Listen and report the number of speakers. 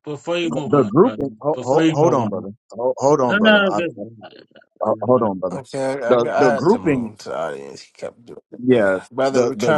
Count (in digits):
3